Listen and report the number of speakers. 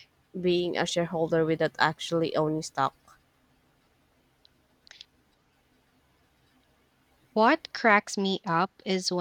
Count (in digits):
2